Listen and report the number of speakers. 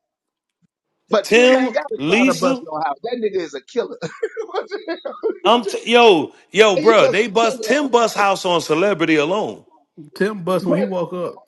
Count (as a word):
three